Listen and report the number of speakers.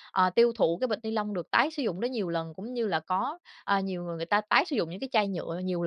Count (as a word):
one